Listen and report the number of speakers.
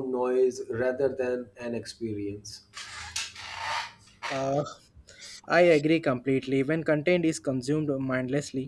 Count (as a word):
two